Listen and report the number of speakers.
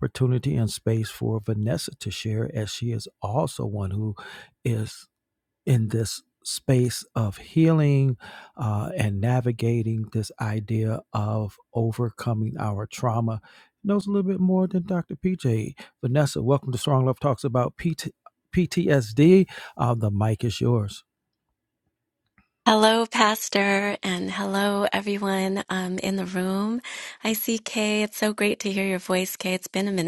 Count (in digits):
2